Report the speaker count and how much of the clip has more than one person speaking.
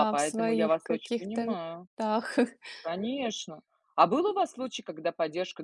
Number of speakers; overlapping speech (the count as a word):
two, about 28%